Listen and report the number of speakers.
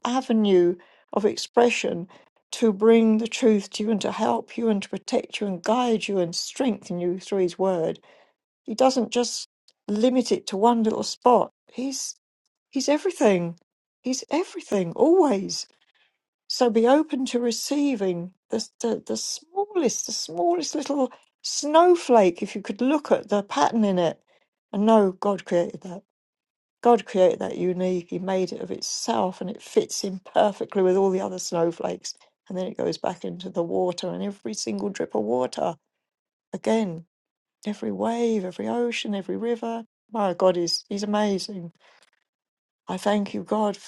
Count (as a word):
one